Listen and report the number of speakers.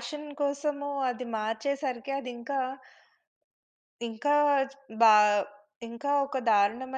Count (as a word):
one